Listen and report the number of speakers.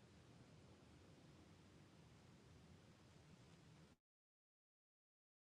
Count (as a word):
zero